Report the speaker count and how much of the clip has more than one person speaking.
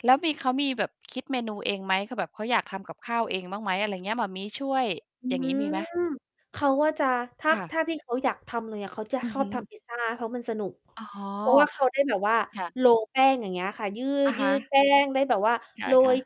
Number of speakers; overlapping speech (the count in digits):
2, about 9%